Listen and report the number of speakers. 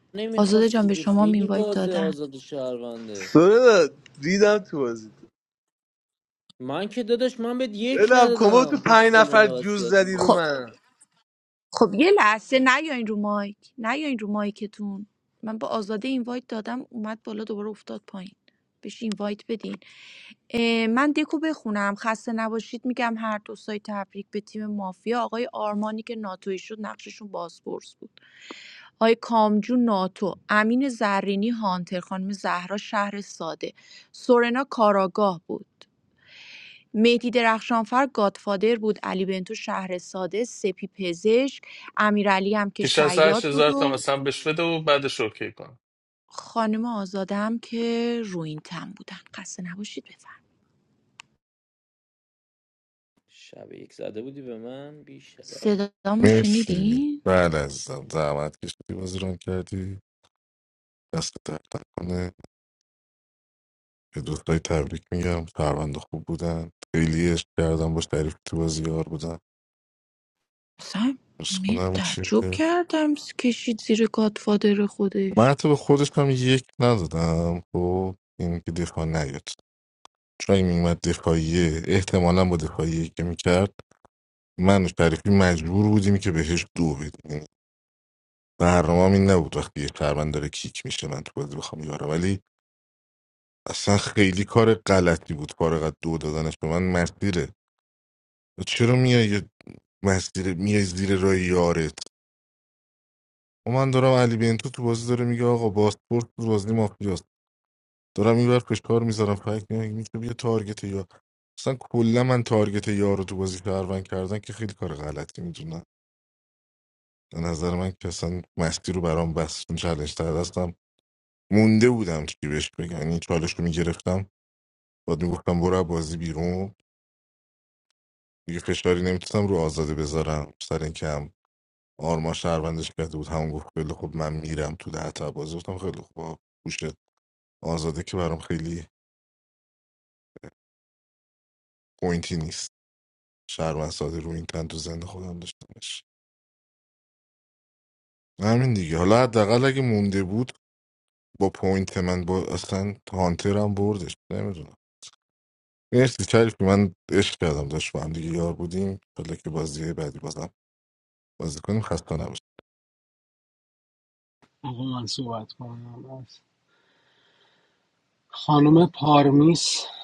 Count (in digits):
6